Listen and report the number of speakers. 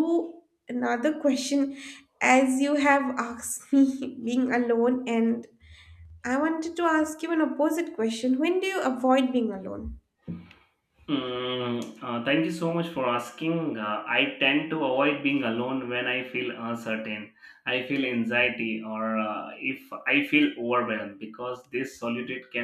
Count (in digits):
2